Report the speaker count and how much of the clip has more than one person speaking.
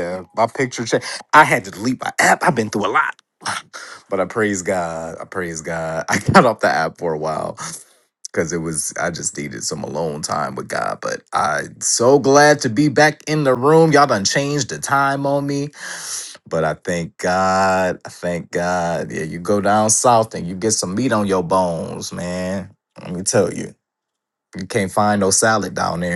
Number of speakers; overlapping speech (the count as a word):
one, no overlap